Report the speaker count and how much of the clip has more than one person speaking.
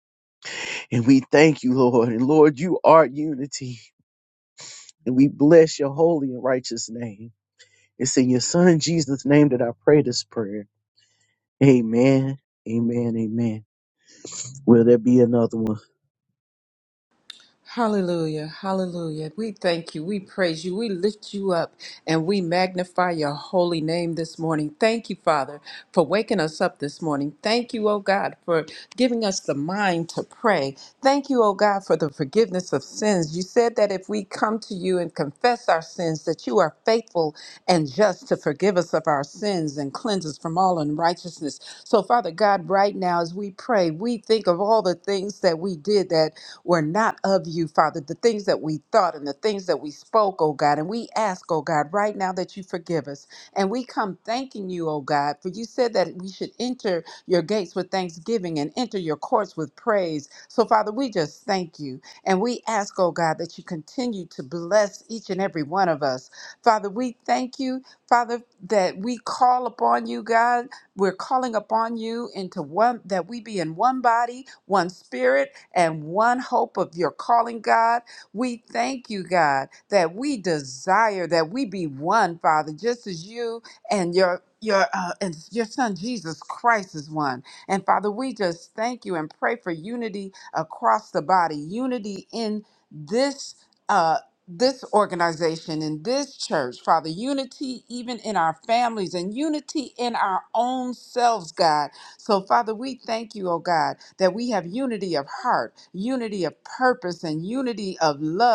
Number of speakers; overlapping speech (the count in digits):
2, no overlap